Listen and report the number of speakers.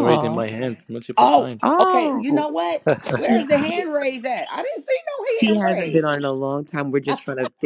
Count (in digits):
3